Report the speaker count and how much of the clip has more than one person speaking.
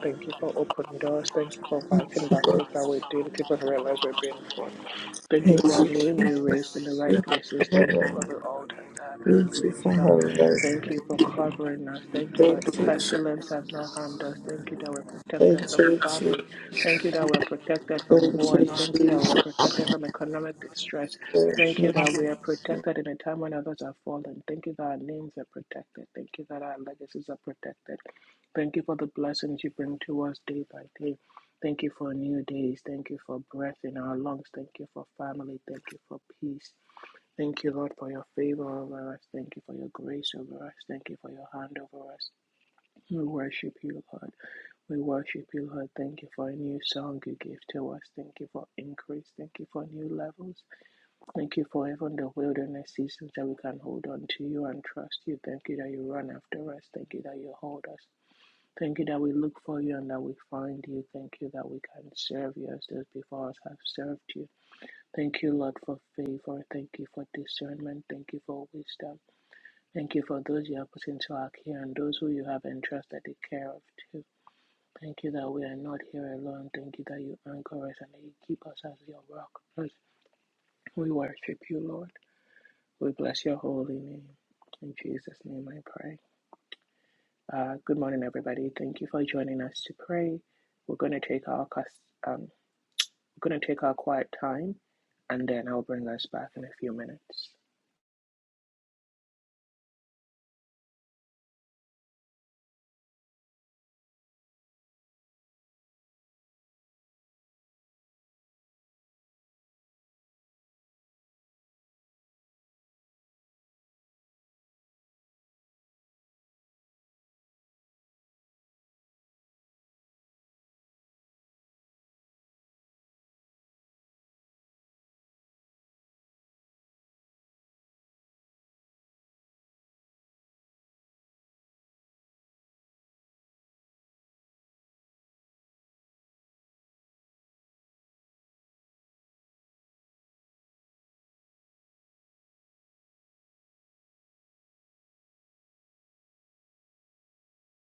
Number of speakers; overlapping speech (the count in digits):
2, about 4%